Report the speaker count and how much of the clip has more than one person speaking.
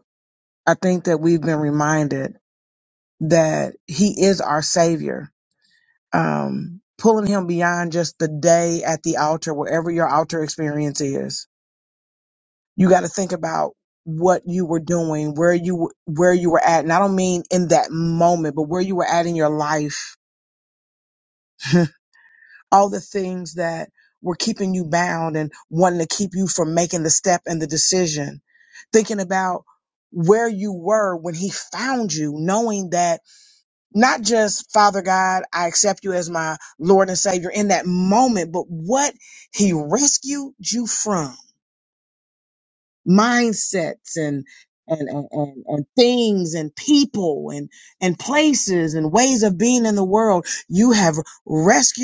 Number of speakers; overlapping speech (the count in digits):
1, no overlap